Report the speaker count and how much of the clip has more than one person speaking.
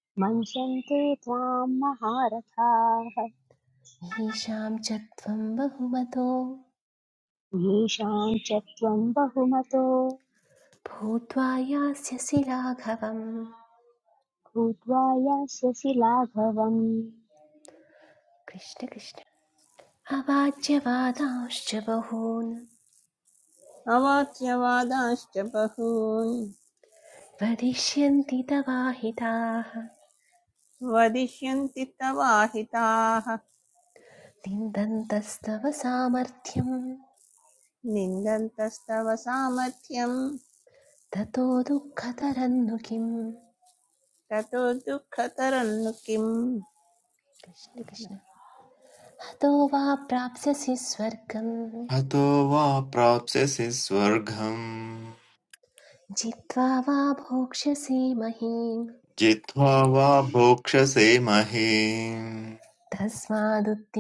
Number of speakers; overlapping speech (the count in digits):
4, under 1%